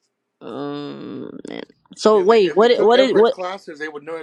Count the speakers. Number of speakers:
two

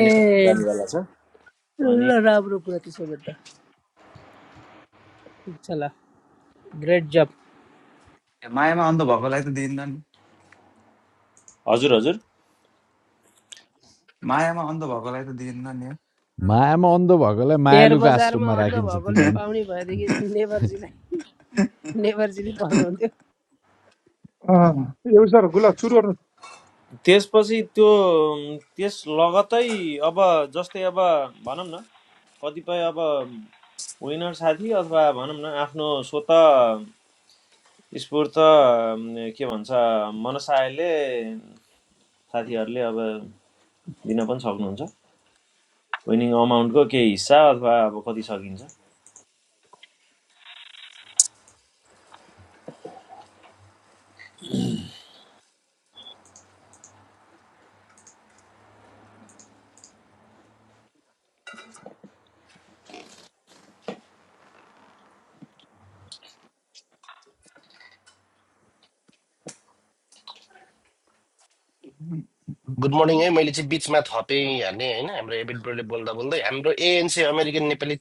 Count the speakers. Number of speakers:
six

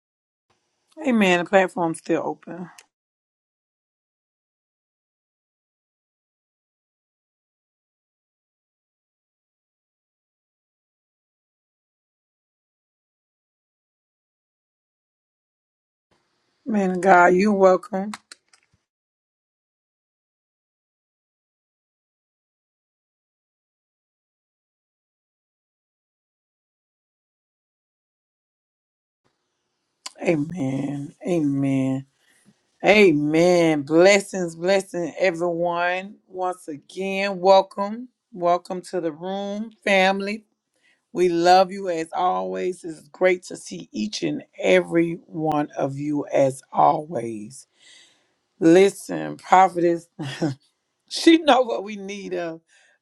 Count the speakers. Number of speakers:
one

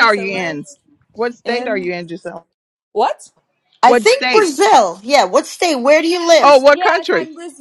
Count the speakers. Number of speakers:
three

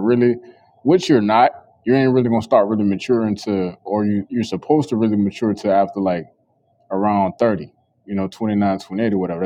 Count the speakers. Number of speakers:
one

